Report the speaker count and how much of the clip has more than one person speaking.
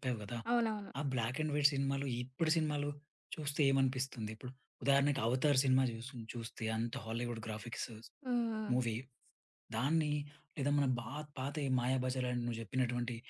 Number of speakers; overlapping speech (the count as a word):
two, about 1%